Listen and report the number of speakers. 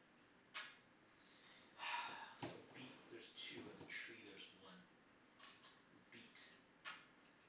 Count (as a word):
one